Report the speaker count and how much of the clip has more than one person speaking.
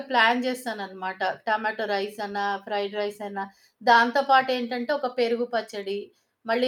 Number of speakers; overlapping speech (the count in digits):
1, no overlap